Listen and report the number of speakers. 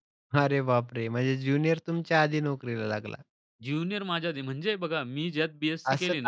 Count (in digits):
2